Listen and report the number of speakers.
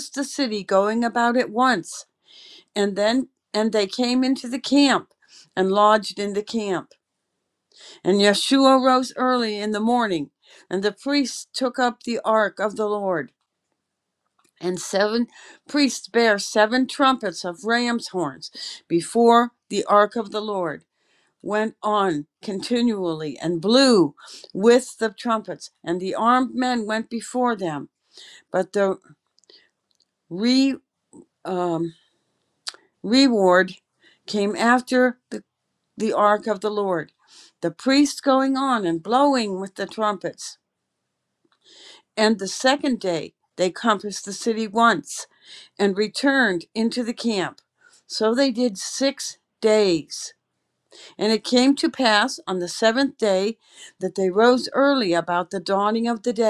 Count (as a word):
one